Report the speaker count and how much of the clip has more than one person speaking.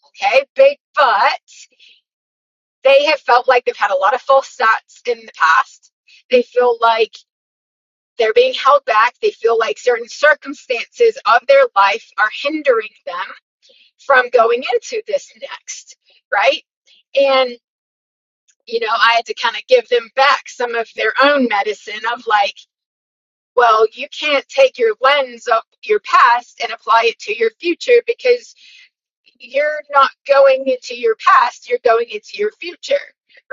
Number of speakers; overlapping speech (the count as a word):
one, no overlap